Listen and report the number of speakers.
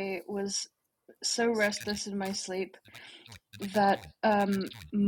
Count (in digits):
1